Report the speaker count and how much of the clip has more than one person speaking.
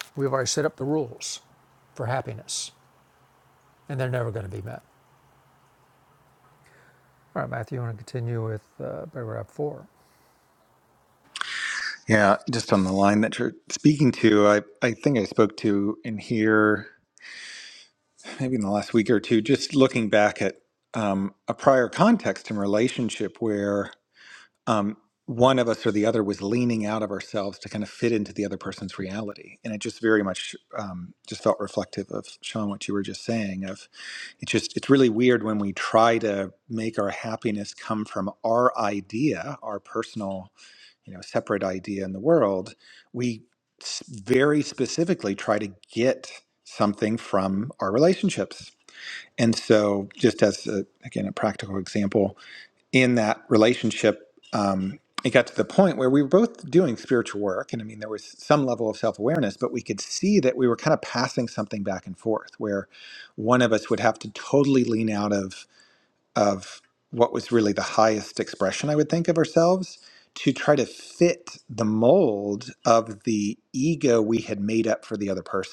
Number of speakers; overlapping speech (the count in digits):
2, no overlap